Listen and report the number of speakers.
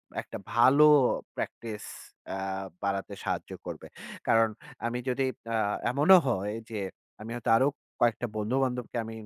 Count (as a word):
one